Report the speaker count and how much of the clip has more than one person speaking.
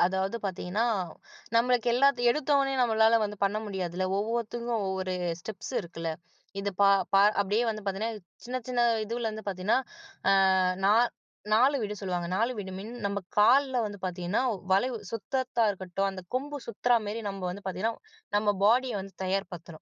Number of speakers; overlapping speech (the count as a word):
one, no overlap